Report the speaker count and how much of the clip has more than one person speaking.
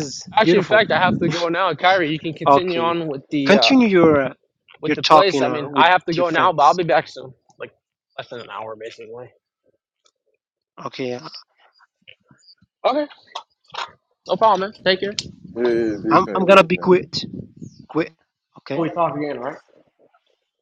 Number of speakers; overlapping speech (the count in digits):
3, about 16%